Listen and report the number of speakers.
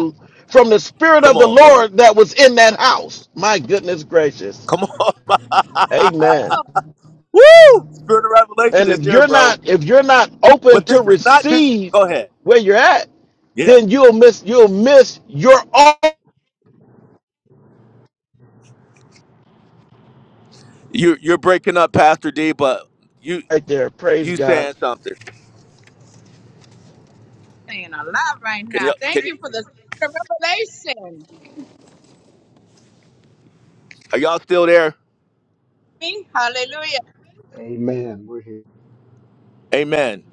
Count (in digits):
4